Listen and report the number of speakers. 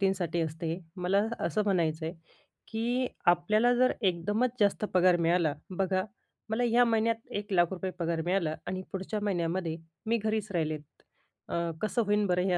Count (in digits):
1